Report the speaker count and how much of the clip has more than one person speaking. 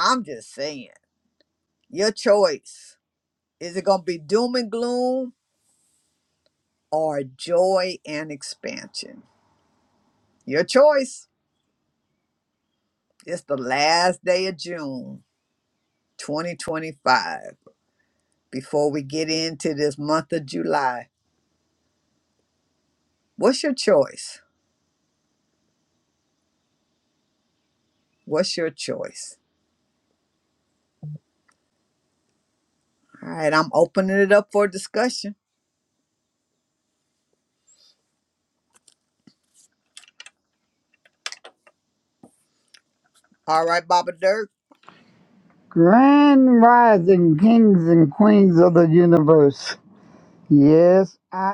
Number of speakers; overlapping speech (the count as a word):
two, no overlap